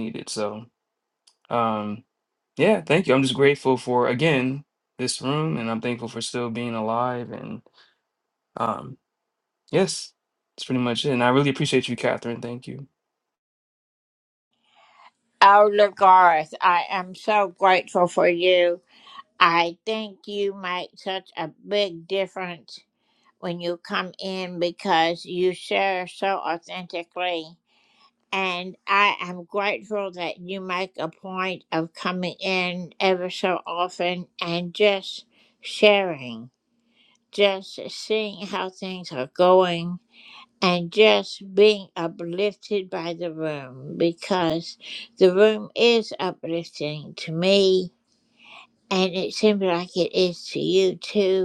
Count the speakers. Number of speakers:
two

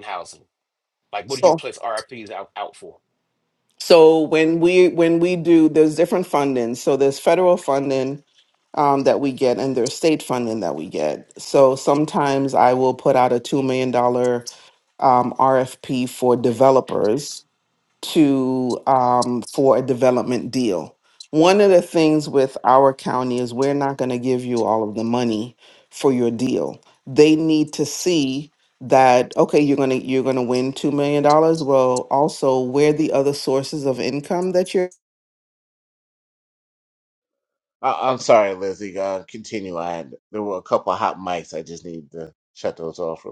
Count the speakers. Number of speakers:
three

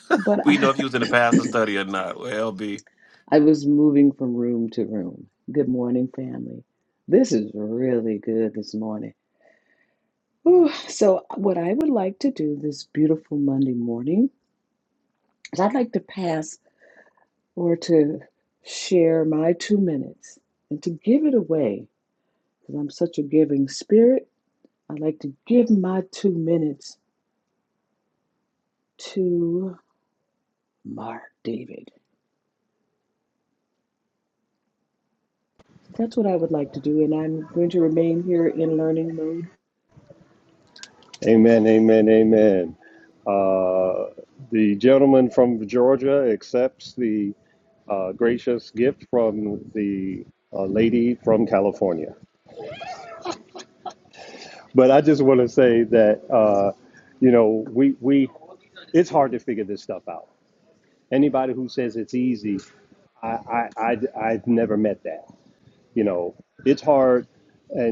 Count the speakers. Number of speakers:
three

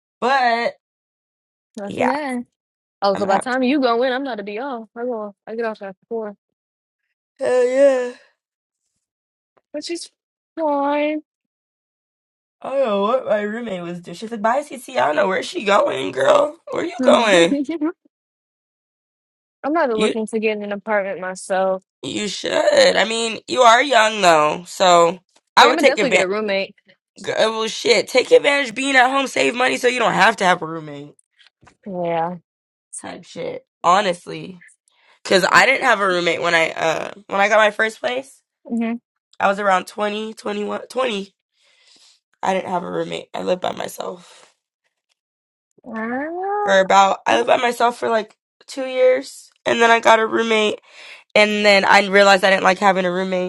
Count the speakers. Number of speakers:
two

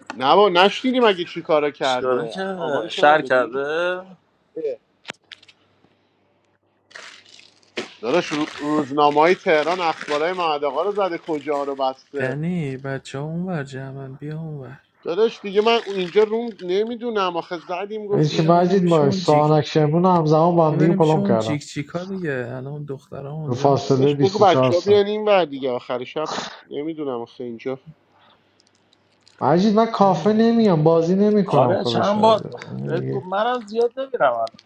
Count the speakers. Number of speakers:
four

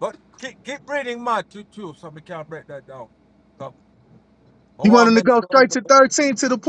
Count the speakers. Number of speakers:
two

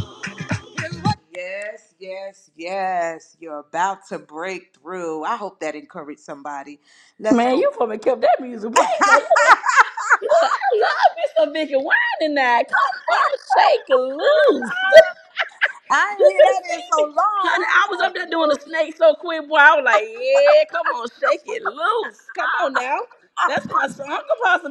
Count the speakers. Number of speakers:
two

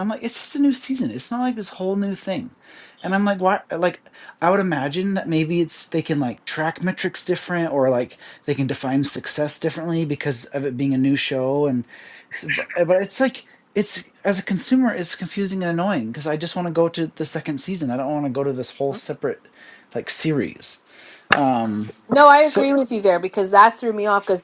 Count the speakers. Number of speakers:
two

